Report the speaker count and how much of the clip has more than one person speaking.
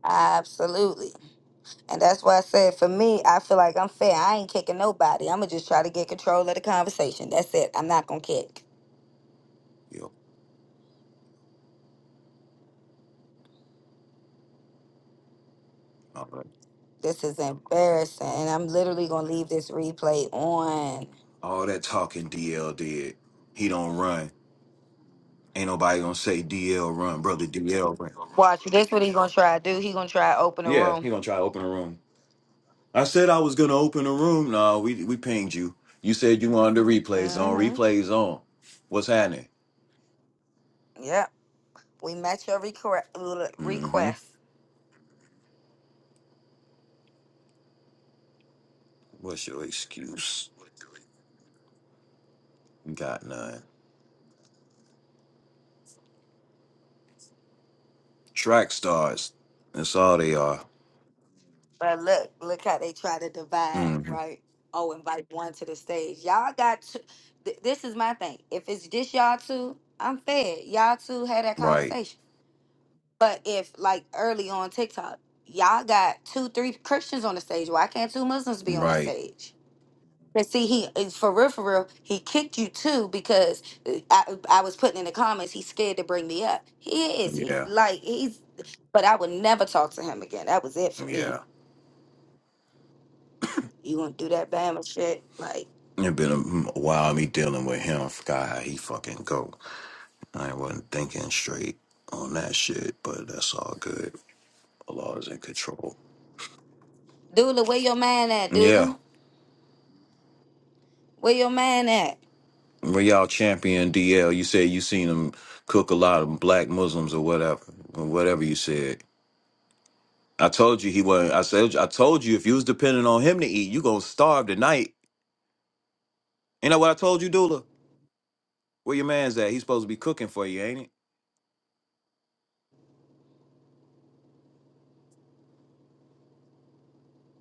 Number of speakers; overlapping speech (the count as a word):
two, about 3%